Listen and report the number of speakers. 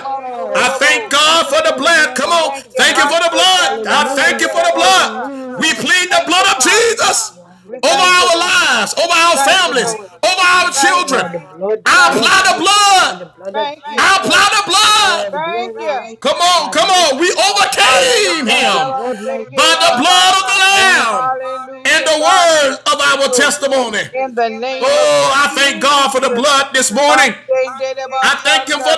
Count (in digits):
3